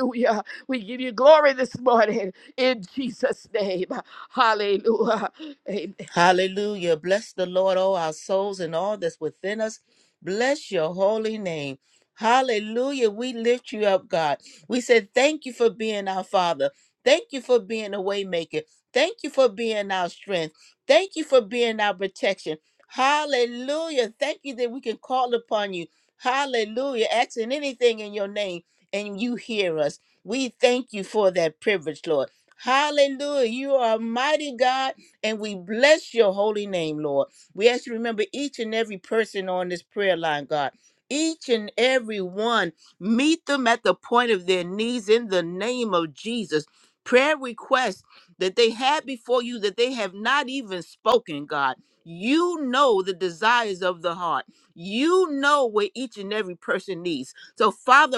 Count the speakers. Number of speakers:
2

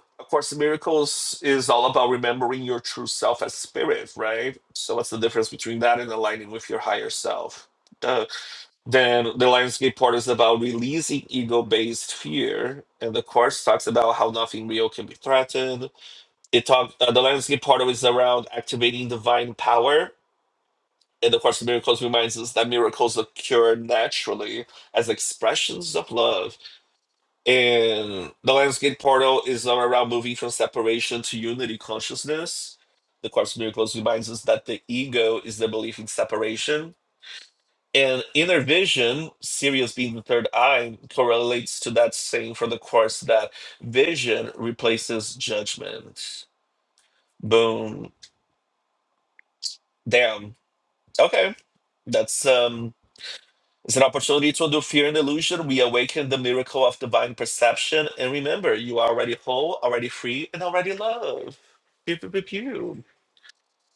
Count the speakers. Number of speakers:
1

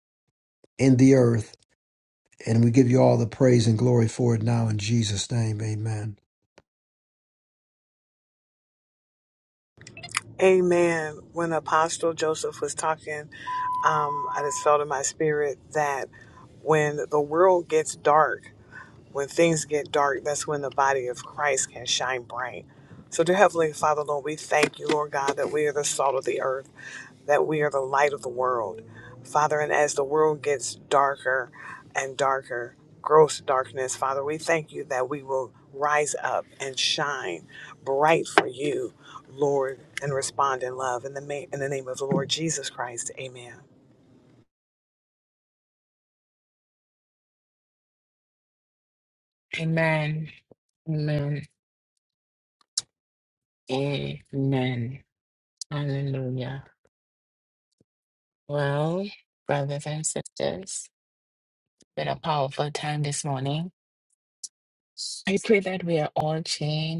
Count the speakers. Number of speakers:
3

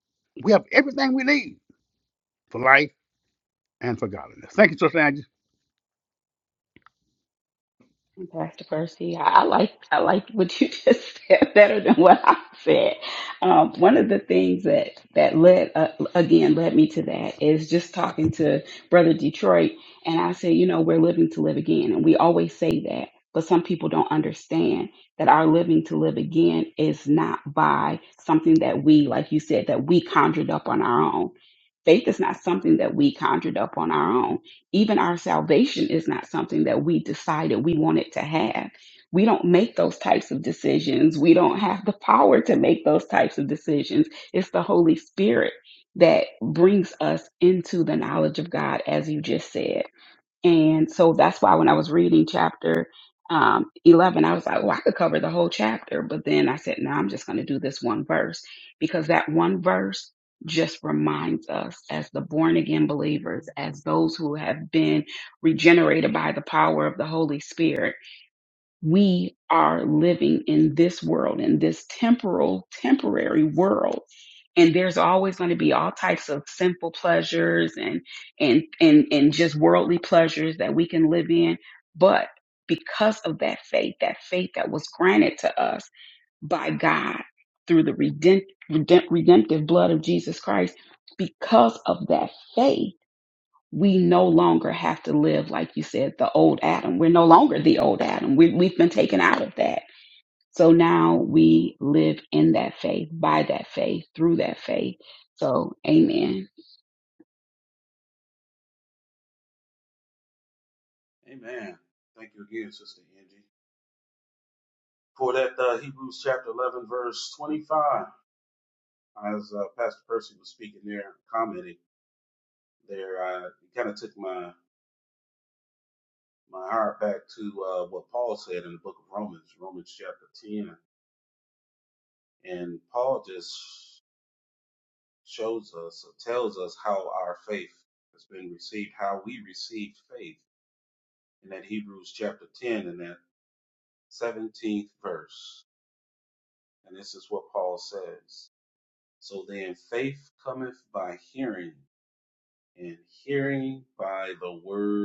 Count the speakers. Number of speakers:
3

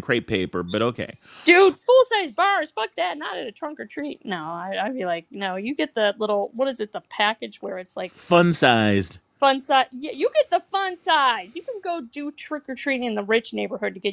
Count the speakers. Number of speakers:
2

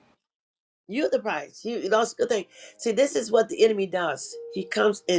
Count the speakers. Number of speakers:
1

